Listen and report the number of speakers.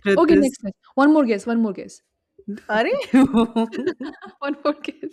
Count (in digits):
2